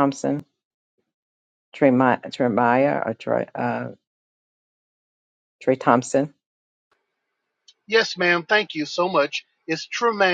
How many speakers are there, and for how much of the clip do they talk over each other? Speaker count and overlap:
two, no overlap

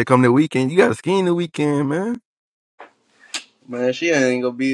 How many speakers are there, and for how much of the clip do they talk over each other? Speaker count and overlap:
two, no overlap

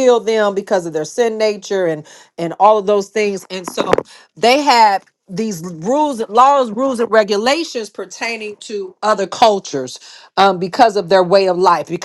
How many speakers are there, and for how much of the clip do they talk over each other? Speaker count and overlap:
one, no overlap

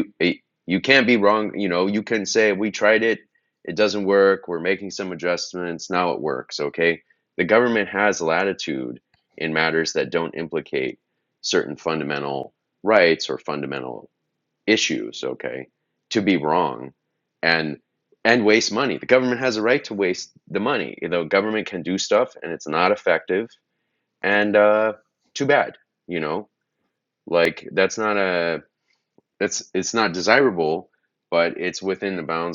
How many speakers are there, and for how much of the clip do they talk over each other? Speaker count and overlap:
one, no overlap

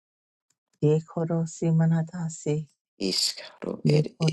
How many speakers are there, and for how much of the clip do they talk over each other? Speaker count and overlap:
two, about 12%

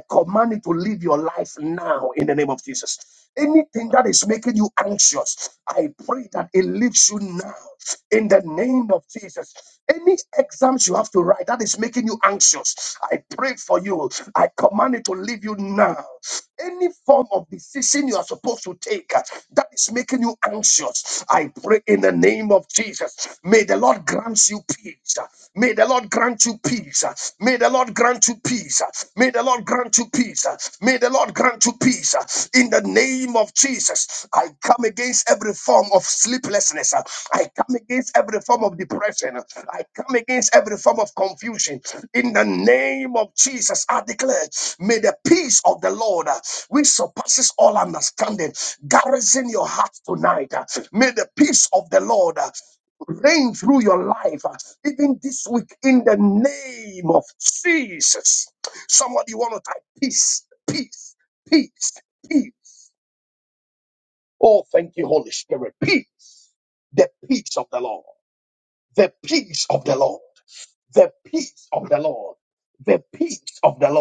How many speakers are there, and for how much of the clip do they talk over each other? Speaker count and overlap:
one, no overlap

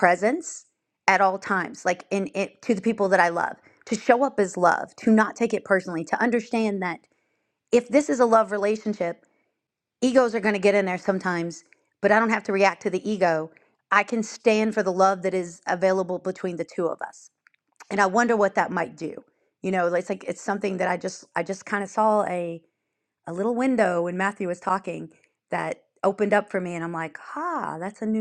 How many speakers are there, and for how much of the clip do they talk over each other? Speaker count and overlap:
one, no overlap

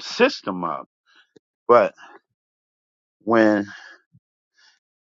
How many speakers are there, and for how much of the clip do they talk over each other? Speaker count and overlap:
one, no overlap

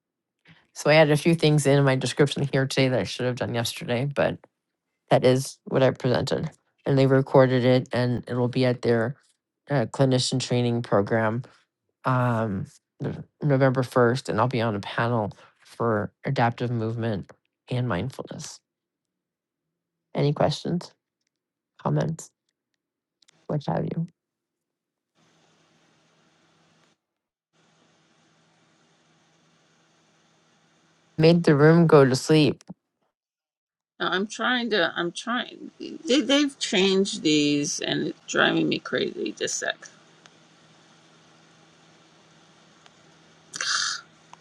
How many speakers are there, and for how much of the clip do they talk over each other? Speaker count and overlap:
two, no overlap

